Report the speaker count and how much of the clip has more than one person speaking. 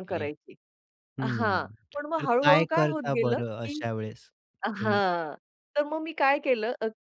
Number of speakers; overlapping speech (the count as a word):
two, about 34%